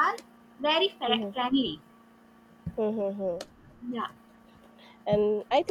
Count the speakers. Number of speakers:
two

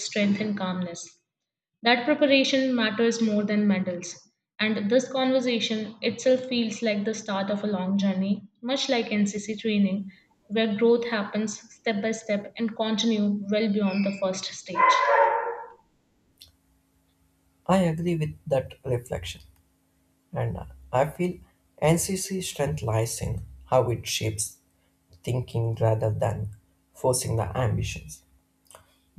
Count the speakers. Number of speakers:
two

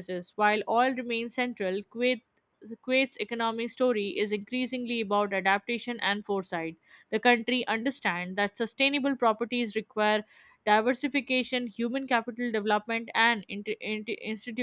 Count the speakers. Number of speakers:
one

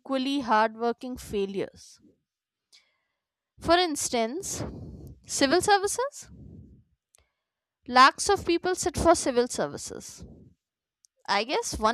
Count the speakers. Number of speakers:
one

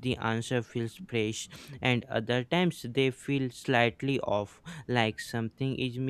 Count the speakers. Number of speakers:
one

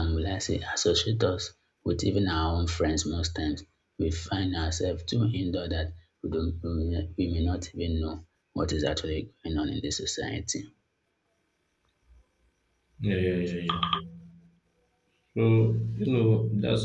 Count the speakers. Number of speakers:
two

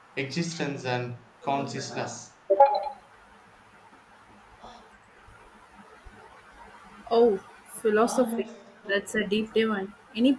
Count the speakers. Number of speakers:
two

